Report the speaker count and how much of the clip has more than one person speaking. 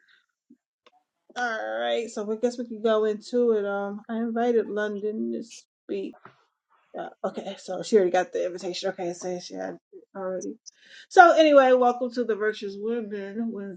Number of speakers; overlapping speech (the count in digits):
1, no overlap